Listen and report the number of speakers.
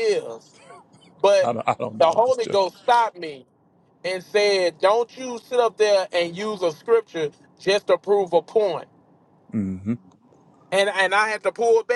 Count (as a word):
two